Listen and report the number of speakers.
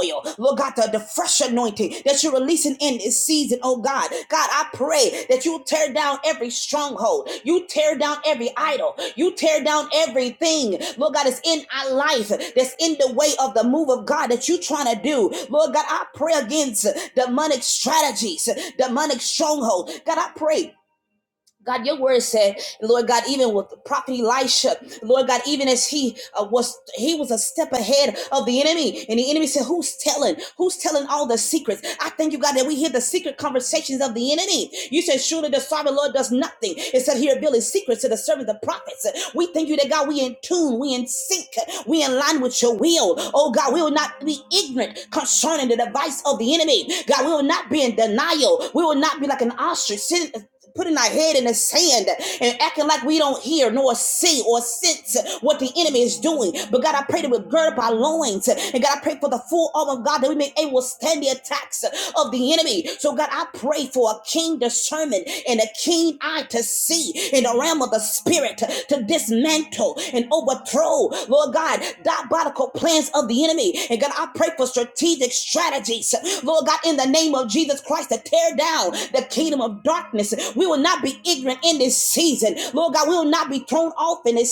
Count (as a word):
one